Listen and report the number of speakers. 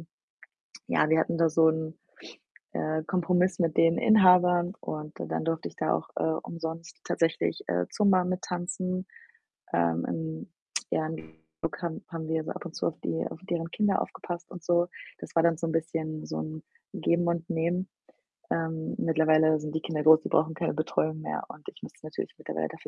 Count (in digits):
1